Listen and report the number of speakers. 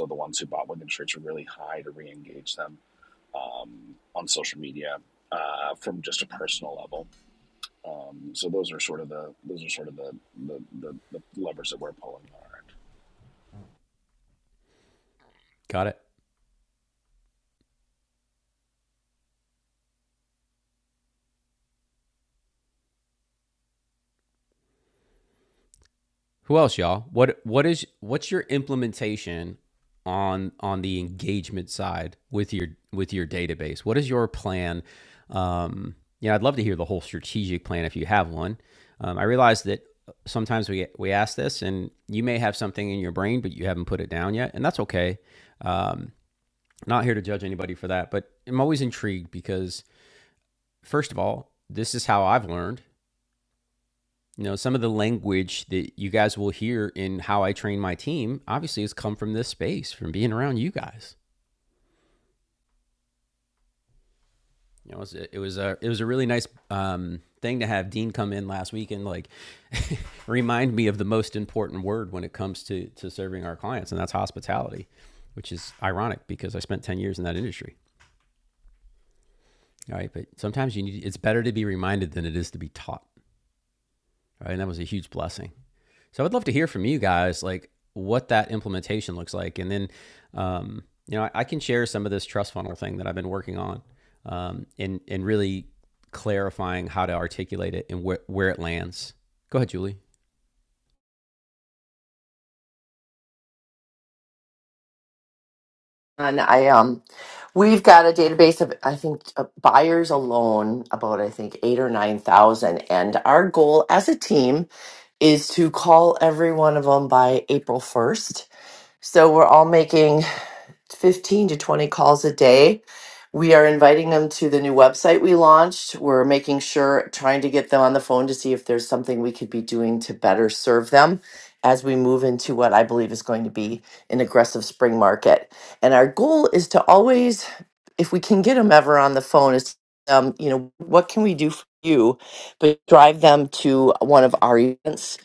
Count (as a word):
three